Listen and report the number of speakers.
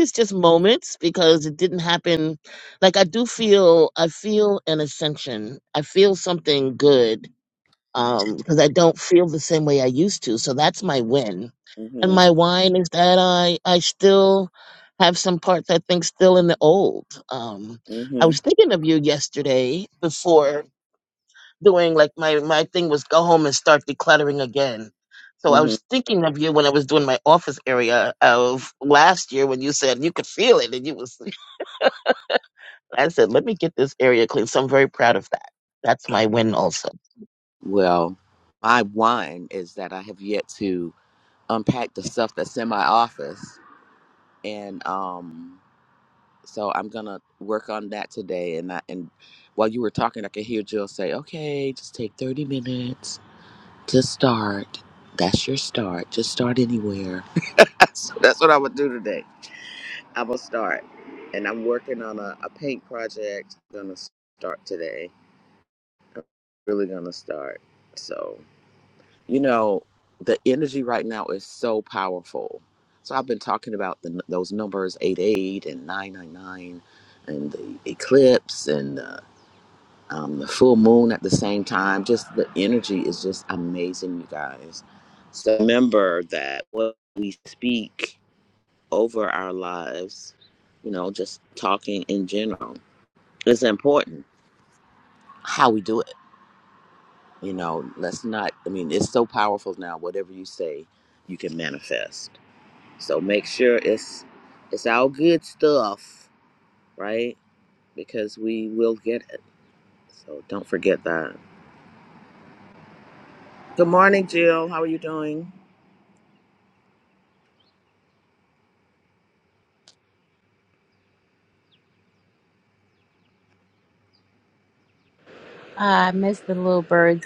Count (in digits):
3